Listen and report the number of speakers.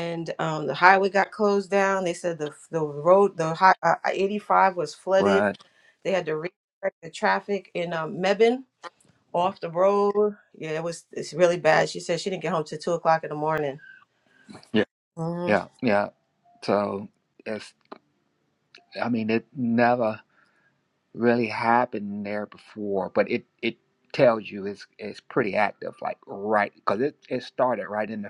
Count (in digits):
2